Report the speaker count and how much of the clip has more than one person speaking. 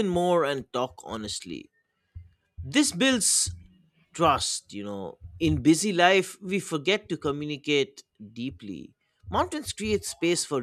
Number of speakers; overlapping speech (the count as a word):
one, no overlap